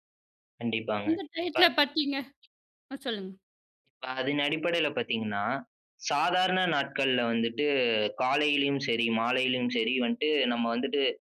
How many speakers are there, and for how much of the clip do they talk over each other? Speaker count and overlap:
2, about 2%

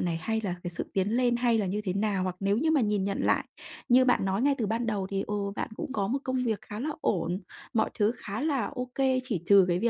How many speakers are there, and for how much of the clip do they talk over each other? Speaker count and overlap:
1, no overlap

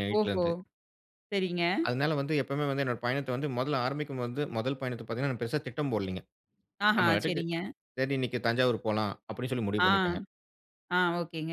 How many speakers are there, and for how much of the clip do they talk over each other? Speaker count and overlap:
2, about 9%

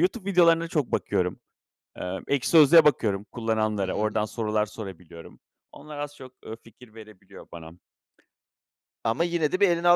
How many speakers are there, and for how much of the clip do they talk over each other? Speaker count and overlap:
2, about 3%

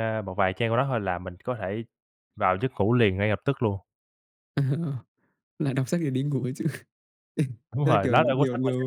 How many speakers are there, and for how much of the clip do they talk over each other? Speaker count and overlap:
2, about 11%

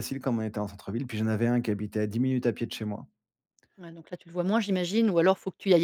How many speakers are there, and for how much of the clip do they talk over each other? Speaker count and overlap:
2, no overlap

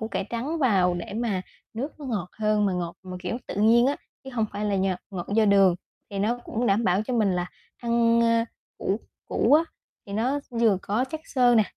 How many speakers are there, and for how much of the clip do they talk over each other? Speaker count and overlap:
1, no overlap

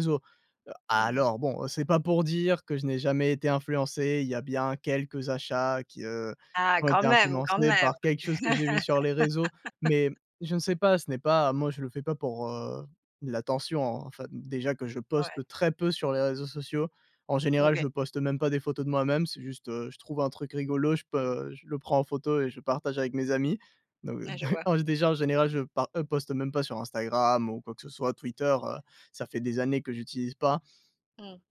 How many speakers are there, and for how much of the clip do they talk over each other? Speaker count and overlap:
2, about 7%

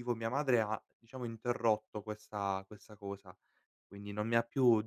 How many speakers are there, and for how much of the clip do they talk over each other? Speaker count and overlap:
1, no overlap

